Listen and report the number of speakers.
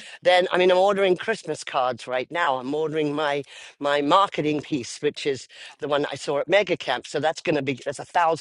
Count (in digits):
1